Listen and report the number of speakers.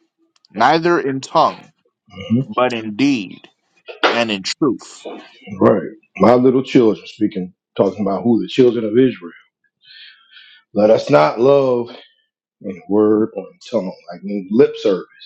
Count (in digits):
2